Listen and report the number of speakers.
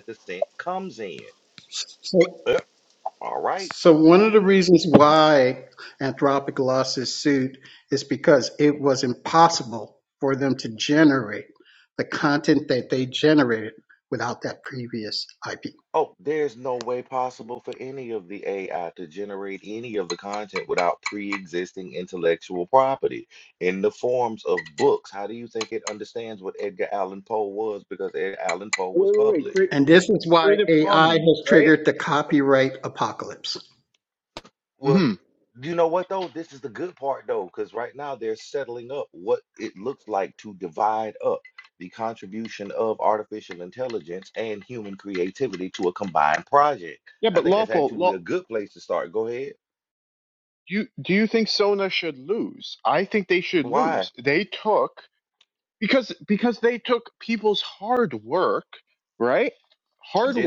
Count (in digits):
3